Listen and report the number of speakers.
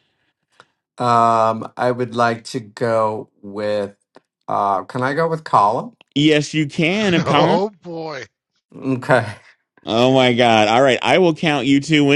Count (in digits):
3